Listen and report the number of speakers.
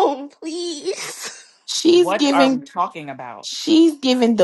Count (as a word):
three